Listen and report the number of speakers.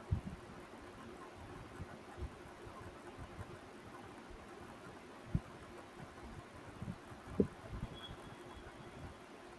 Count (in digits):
0